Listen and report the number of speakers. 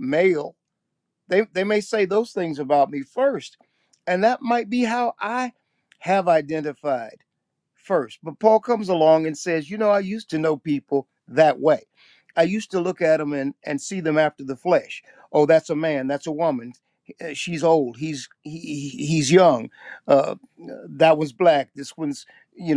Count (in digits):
1